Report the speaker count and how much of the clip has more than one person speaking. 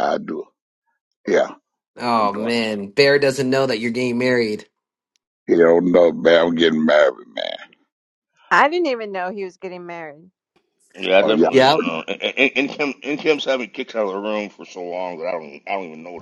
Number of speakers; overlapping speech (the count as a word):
four, about 4%